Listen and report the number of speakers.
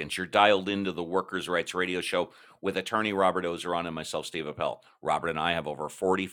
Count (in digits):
1